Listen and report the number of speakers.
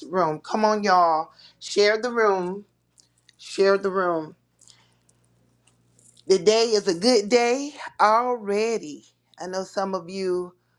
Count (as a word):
one